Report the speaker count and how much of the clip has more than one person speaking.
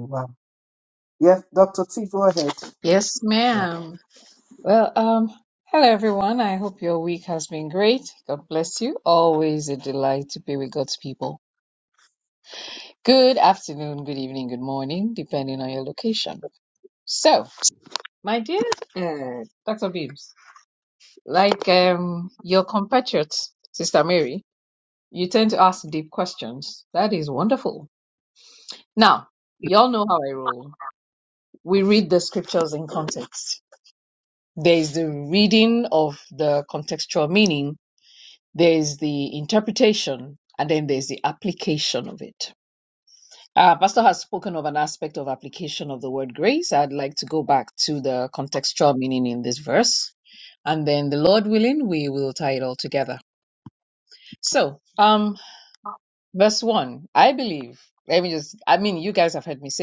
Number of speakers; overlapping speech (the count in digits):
2, under 1%